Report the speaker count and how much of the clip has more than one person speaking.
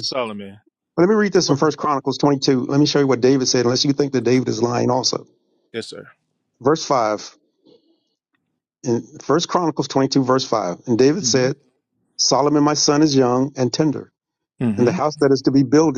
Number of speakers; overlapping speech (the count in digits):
2, about 4%